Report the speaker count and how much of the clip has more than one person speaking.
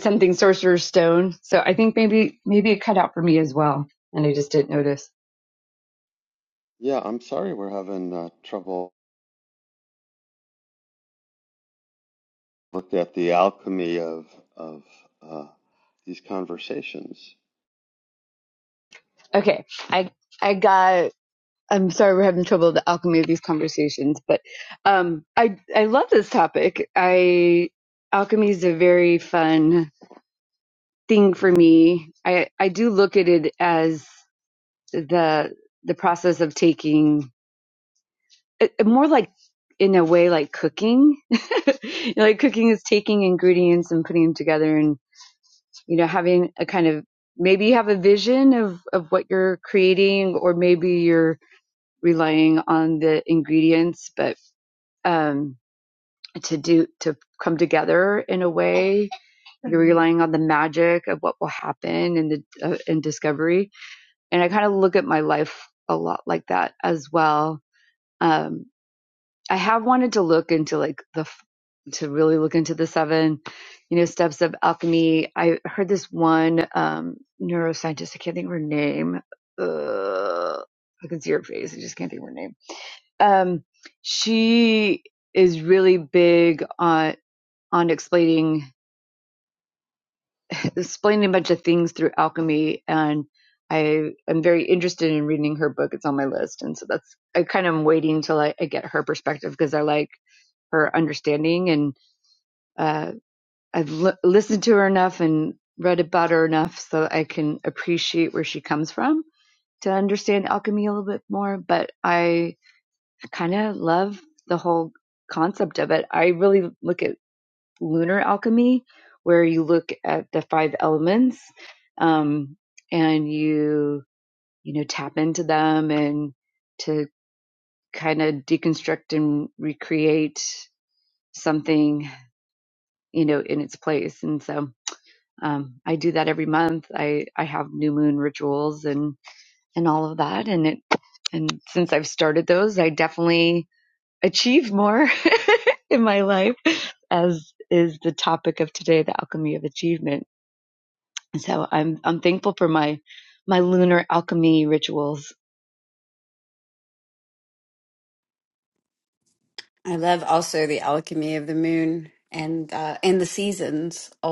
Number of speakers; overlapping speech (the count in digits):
3, no overlap